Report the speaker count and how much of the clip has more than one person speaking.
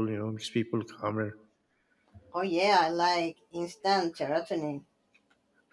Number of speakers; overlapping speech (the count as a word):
two, no overlap